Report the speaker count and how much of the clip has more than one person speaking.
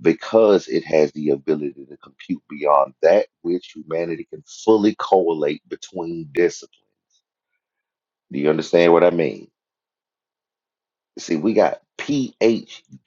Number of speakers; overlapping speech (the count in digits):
1, no overlap